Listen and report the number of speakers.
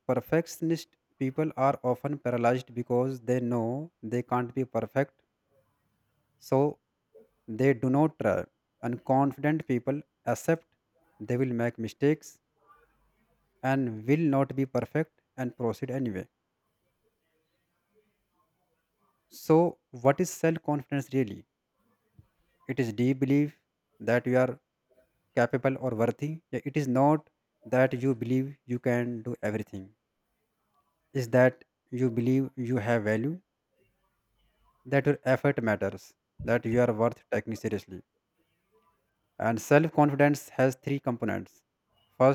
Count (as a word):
one